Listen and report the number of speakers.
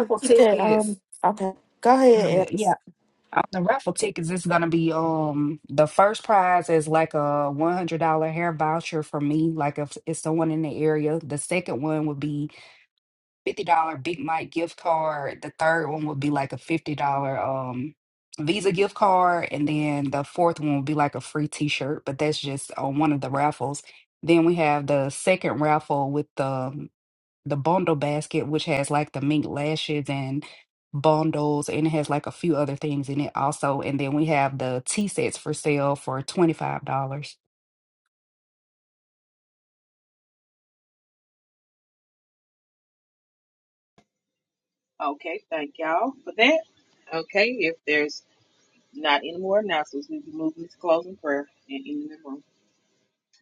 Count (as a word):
three